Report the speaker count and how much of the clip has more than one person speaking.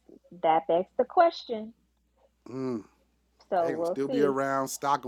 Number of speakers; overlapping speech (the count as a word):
two, about 14%